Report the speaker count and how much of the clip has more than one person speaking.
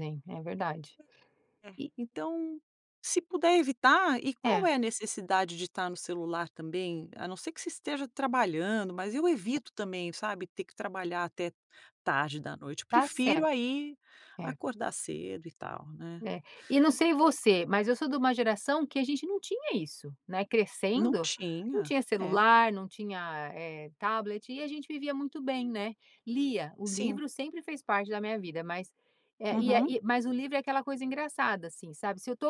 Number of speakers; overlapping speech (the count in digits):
2, about 7%